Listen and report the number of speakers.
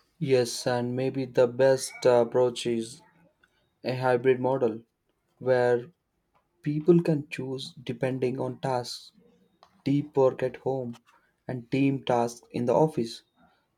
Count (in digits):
1